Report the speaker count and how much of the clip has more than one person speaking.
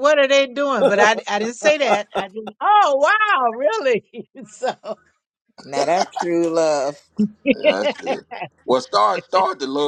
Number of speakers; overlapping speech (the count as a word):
three, no overlap